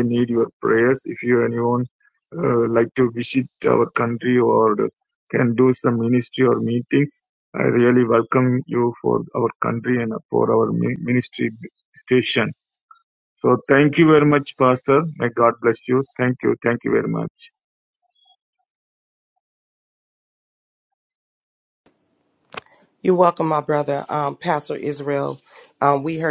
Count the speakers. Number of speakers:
two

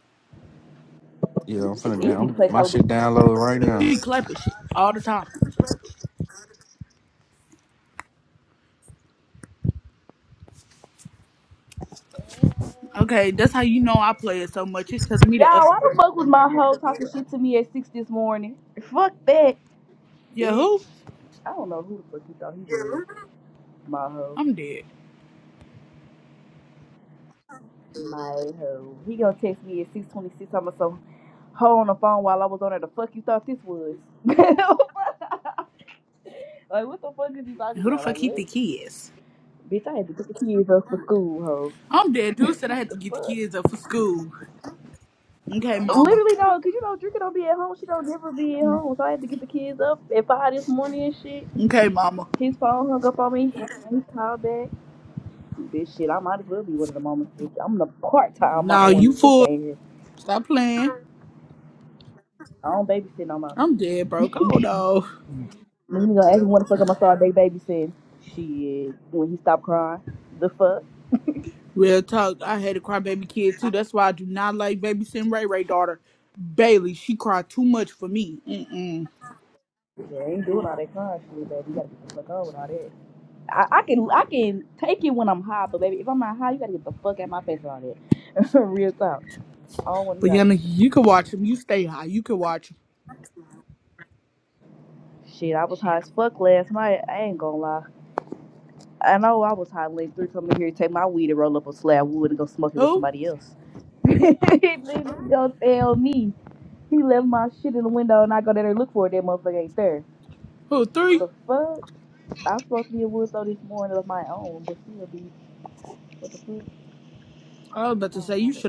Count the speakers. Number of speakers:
three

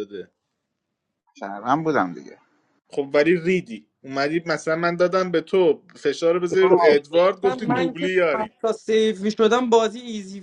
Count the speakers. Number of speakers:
three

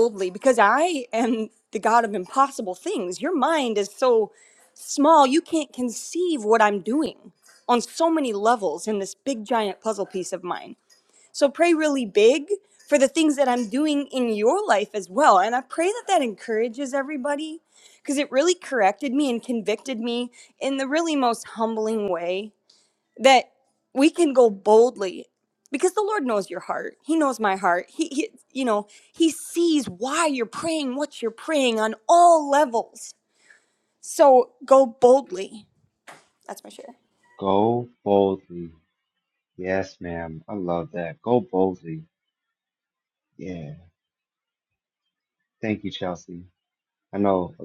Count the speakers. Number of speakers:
two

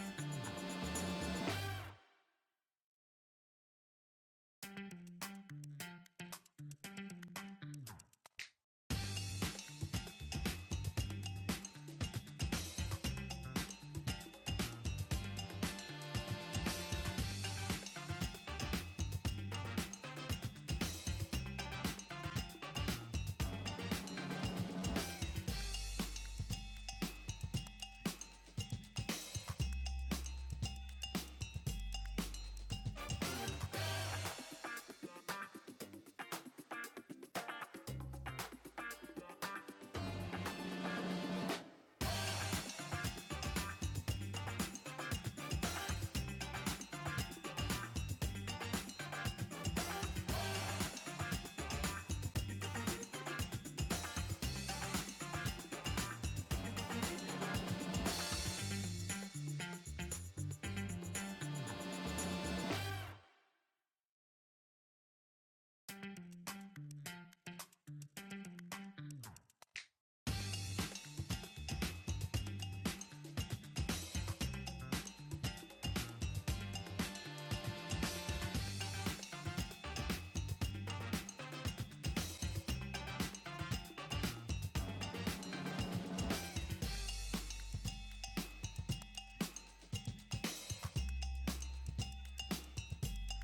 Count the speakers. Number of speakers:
zero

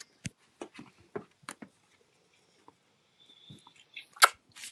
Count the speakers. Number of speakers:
zero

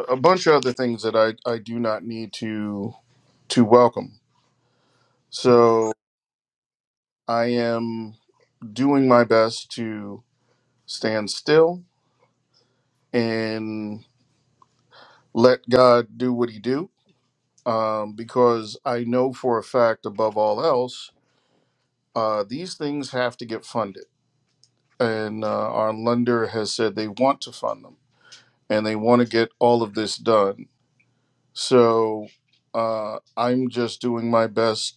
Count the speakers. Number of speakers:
one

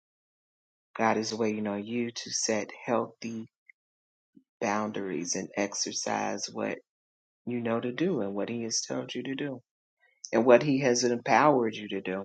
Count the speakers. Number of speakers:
one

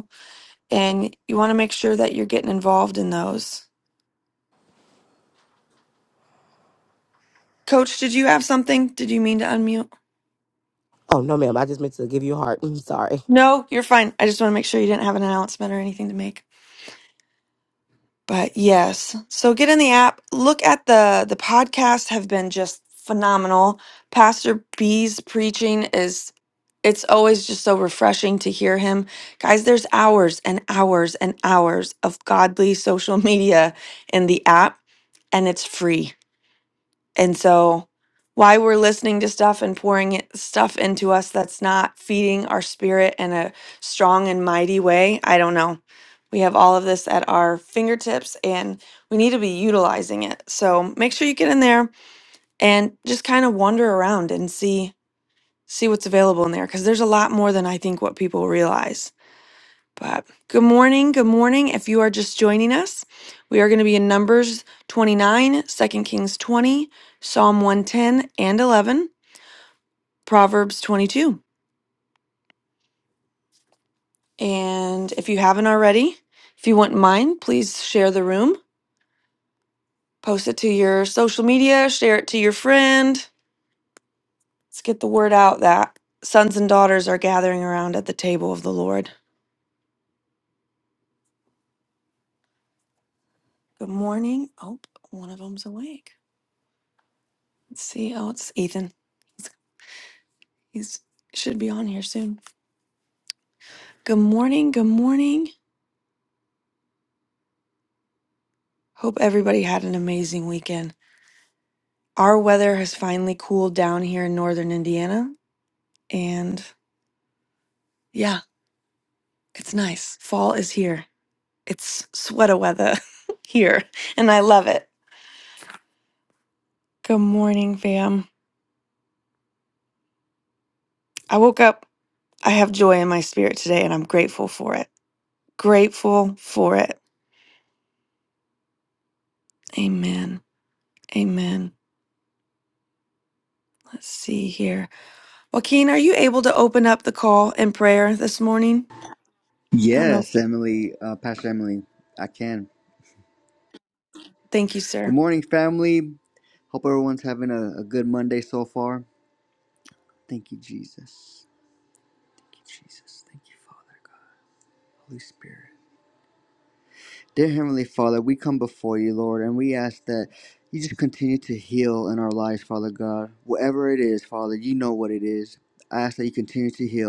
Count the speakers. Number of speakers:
three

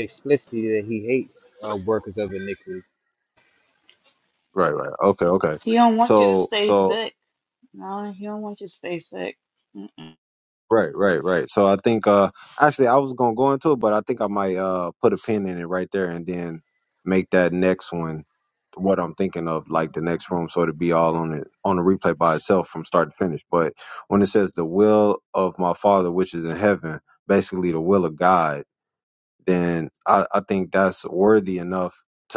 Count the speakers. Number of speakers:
three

